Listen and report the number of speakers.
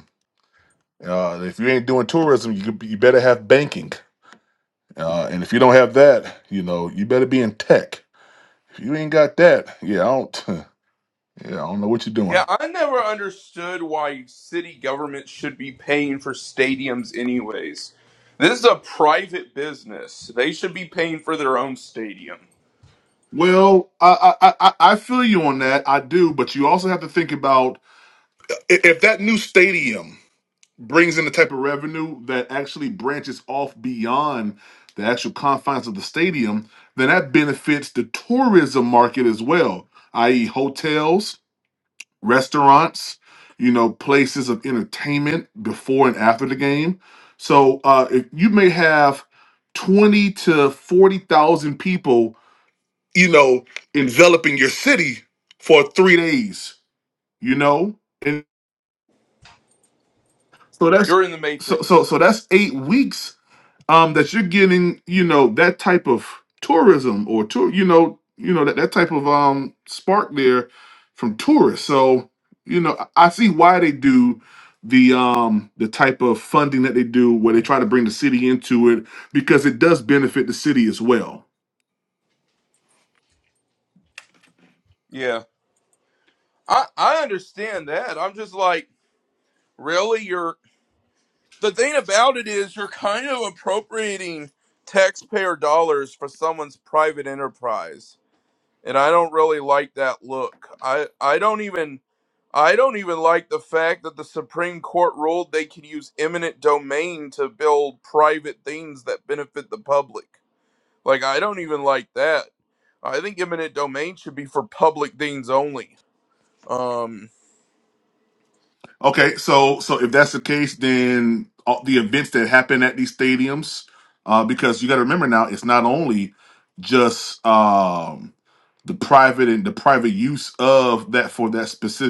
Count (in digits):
2